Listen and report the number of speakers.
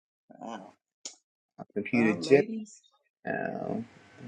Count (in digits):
2